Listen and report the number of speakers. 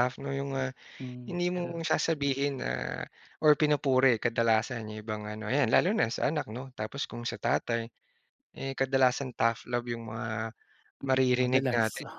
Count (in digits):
2